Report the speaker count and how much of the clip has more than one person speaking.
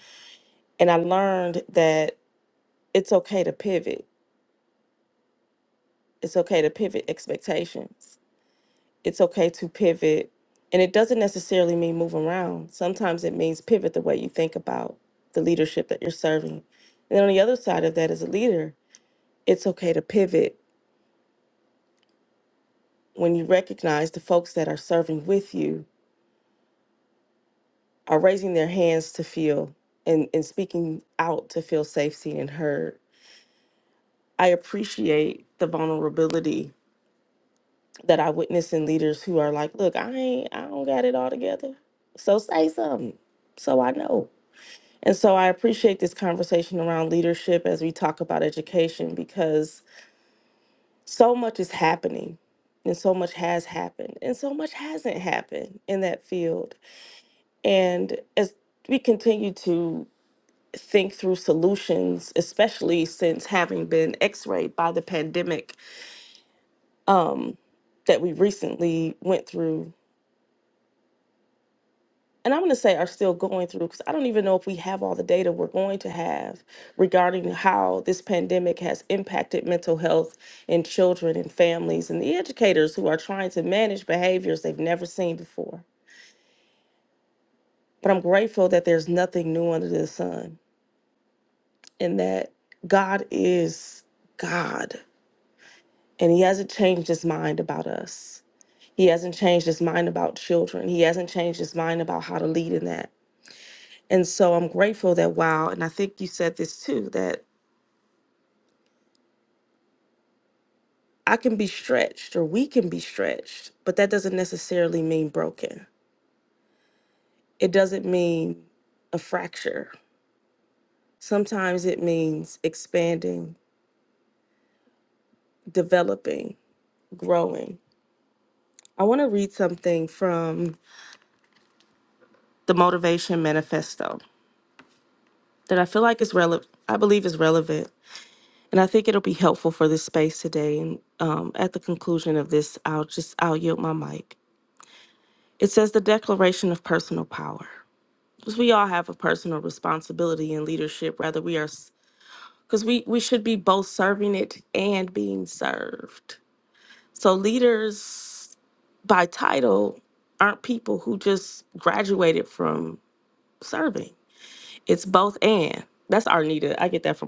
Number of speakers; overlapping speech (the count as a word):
one, no overlap